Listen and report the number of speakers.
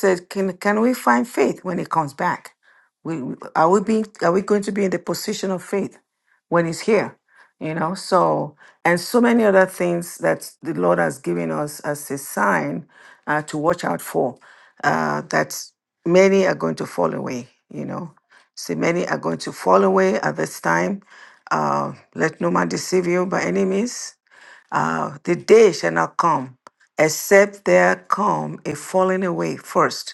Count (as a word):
one